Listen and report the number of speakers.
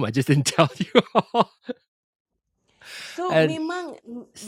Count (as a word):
two